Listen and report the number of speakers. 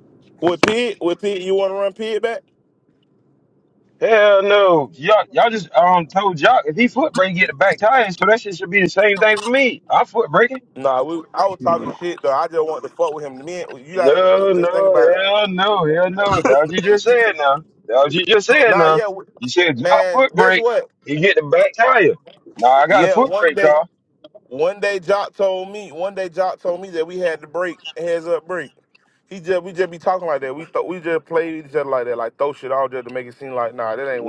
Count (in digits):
2